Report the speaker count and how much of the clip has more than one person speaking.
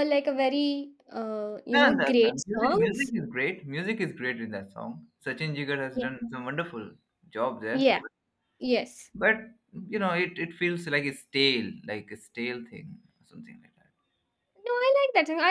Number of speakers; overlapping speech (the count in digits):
2, about 11%